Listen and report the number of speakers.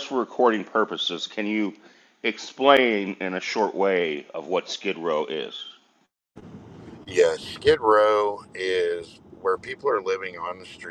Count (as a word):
two